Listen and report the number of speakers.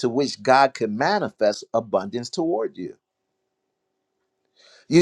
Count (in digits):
1